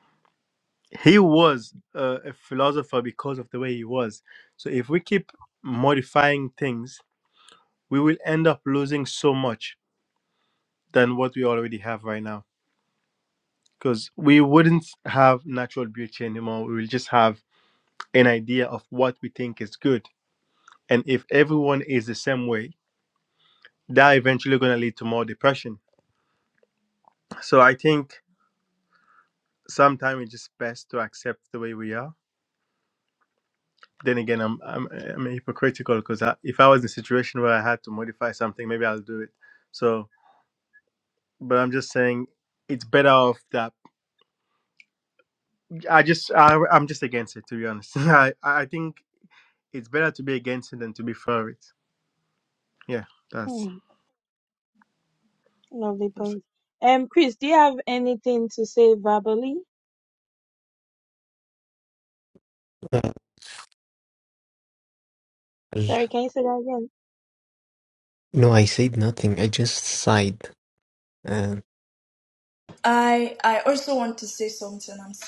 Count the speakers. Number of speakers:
4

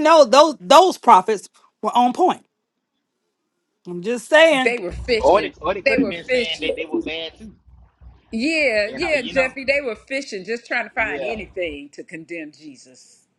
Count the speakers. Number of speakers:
3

